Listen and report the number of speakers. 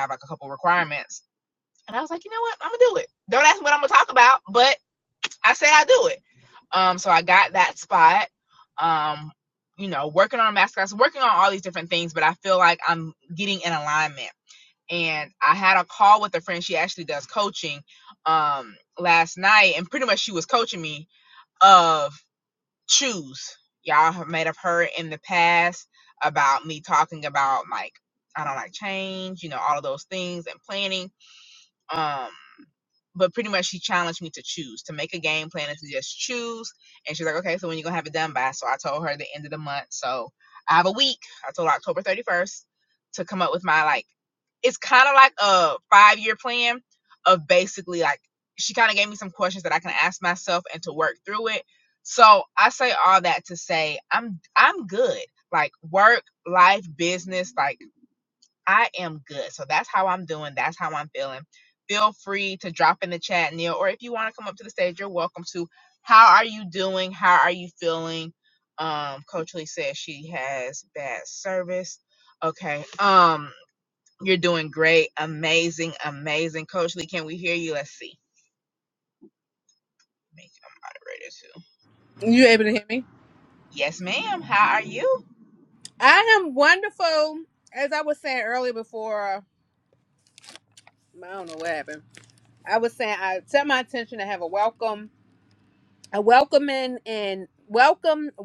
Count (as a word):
two